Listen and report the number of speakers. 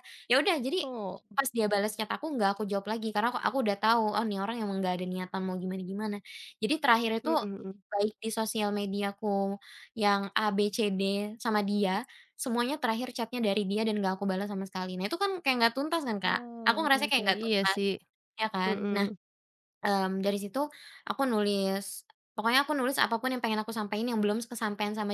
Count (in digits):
2